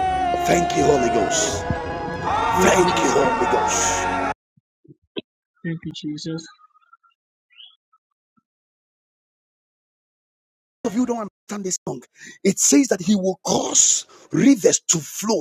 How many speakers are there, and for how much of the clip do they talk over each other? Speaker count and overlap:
two, about 4%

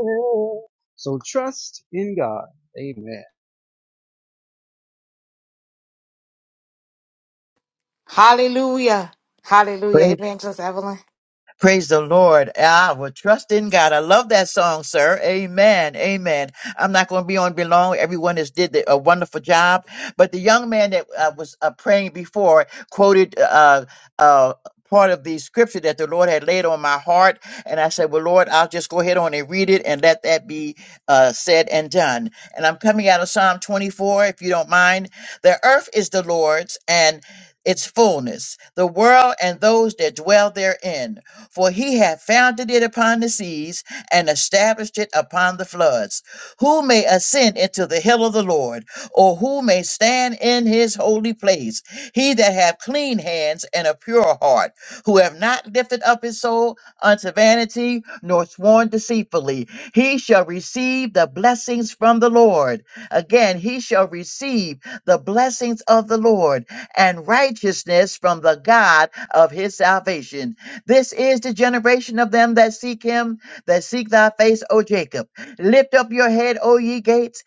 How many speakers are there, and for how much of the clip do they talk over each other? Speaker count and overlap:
three, no overlap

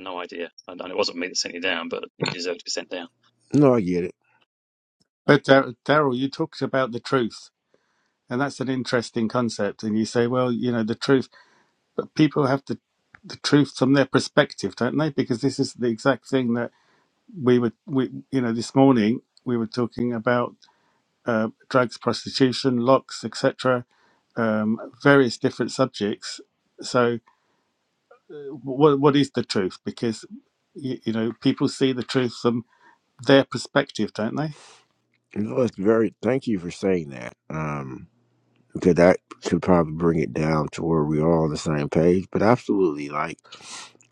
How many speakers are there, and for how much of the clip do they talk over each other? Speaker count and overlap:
three, no overlap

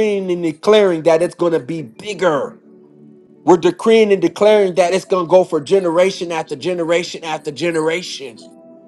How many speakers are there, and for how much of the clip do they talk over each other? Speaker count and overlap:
one, no overlap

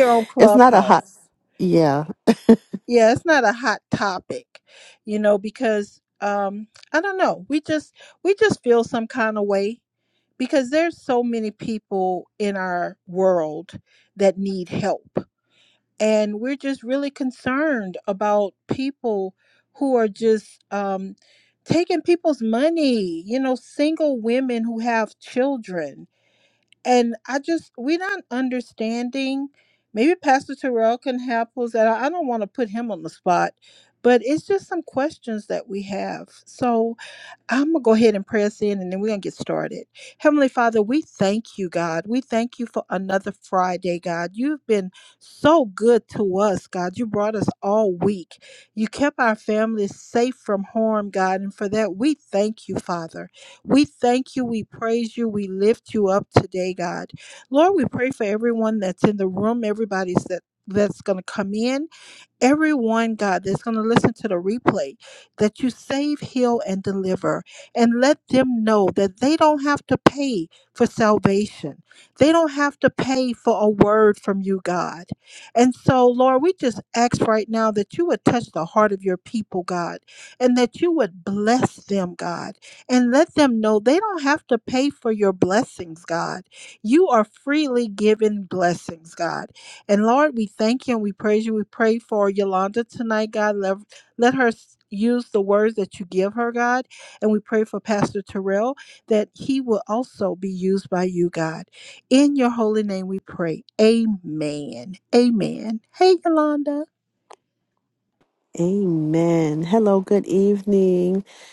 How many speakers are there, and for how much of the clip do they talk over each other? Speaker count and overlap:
two, about 1%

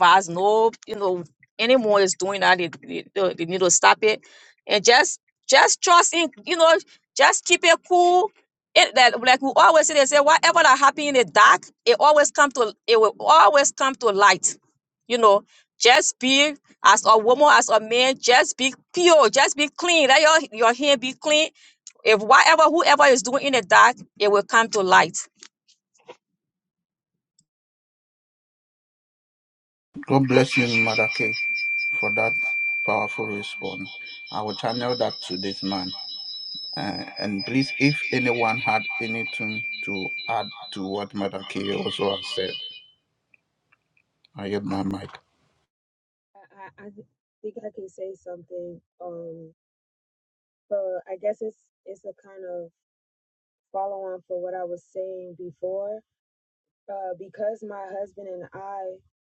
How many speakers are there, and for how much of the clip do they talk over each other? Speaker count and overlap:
three, no overlap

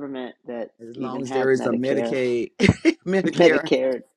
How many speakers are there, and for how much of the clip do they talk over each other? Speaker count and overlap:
two, about 42%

